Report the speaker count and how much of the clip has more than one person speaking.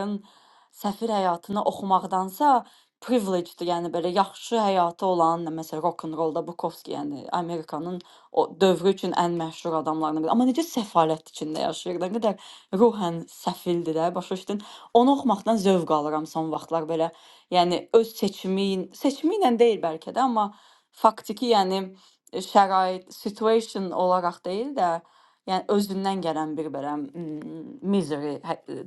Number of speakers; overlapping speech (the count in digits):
1, no overlap